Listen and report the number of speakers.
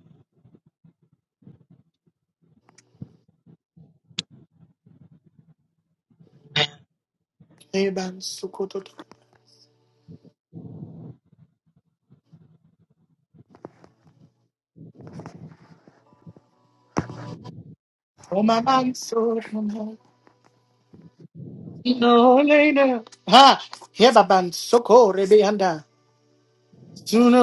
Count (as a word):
one